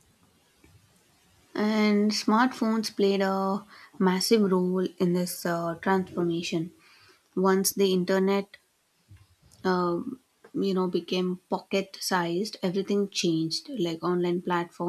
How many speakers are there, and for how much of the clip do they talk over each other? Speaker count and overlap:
one, no overlap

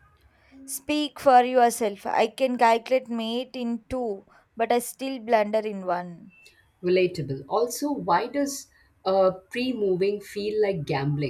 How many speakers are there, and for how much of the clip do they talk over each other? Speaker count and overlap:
two, no overlap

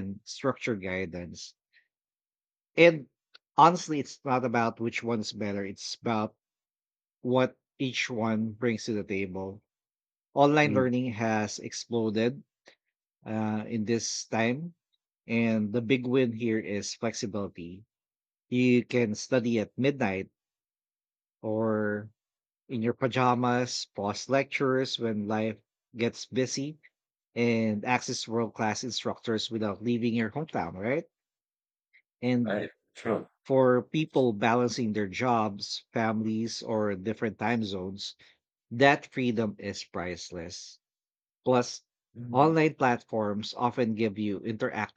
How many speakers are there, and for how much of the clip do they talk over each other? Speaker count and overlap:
two, about 1%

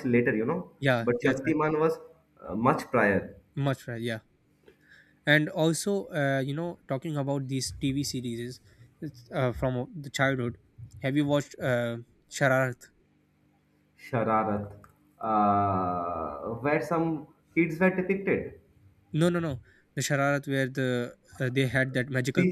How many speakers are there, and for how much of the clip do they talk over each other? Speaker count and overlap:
two, about 3%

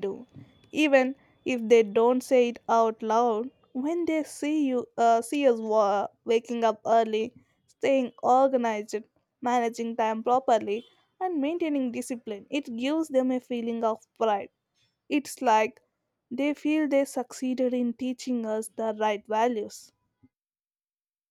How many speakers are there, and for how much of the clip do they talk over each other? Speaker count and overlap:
one, no overlap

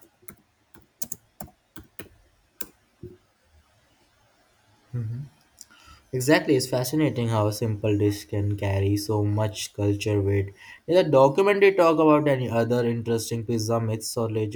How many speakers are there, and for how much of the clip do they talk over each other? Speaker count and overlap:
one, no overlap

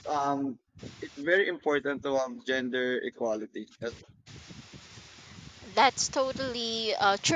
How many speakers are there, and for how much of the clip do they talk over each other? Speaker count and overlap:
two, no overlap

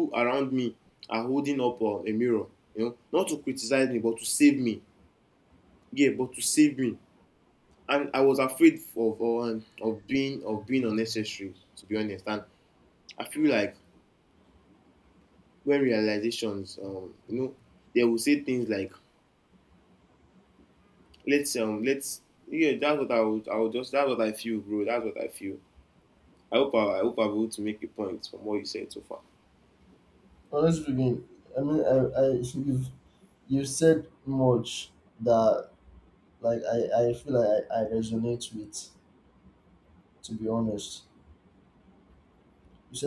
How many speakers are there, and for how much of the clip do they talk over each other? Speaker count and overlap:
two, no overlap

